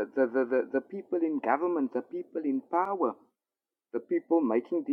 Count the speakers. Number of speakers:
one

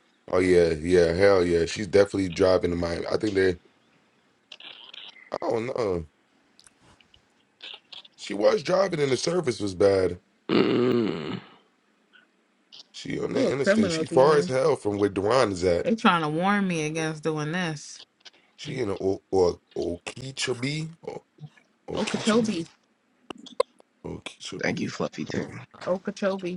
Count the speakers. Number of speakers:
three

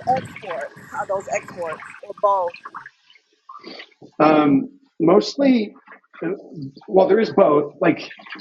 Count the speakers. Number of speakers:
two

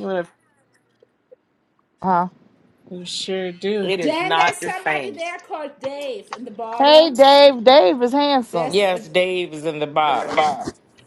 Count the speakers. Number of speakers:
four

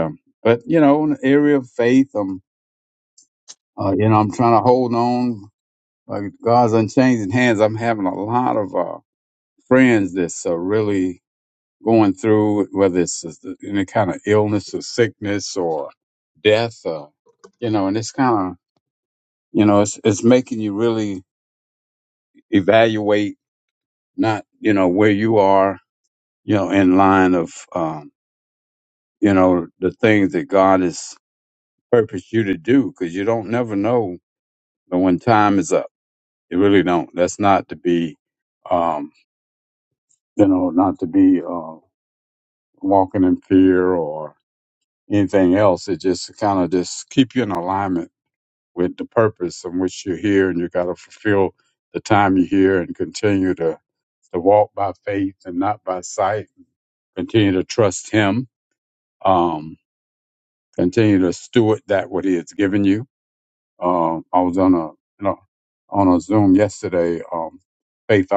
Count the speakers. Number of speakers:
one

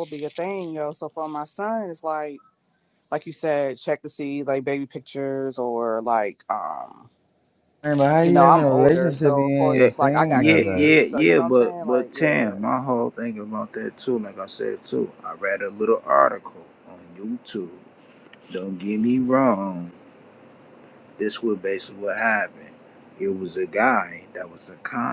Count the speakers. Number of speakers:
three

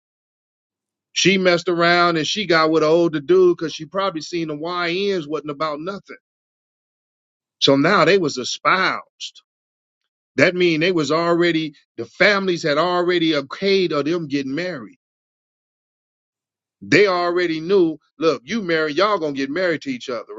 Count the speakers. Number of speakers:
one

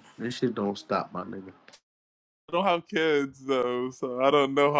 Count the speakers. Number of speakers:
two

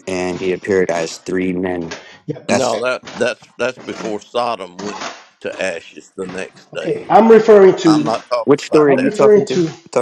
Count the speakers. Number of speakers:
three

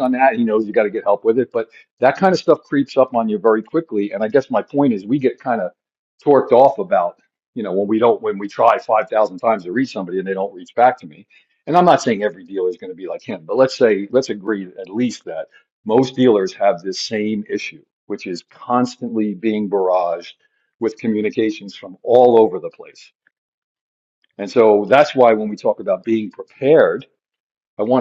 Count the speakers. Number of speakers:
one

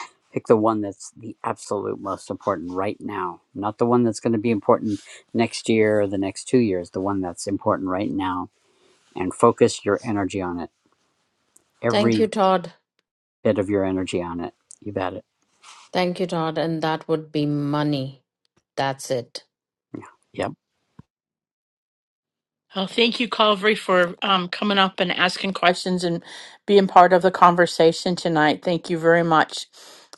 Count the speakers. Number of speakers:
three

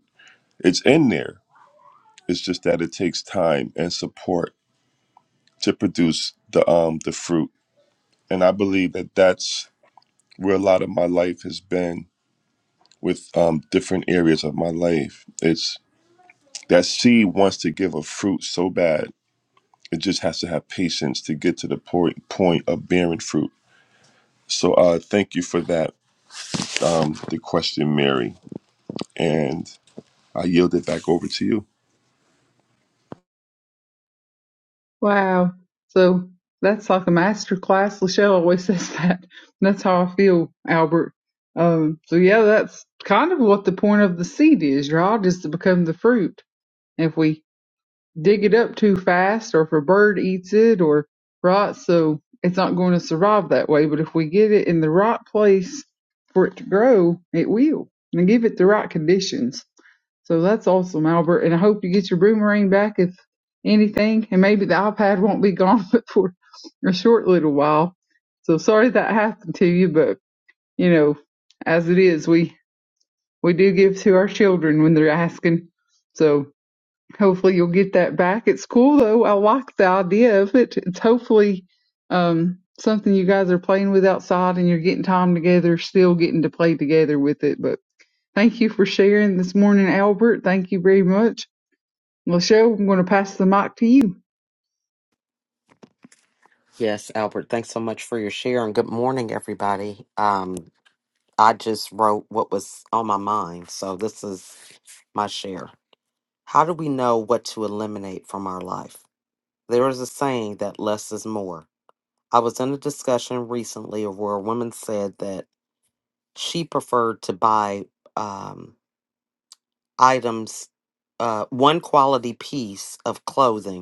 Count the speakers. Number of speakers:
three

